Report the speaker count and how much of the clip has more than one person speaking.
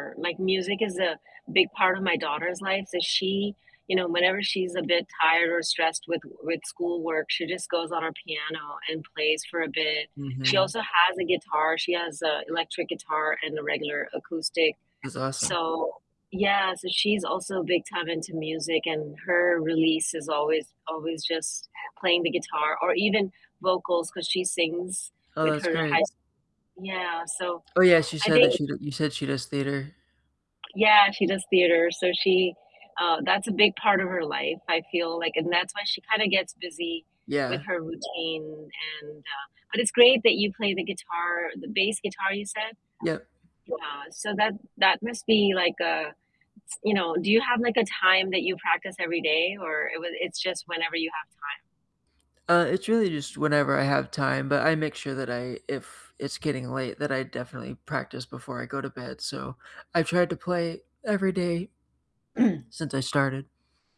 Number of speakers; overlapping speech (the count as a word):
two, about 2%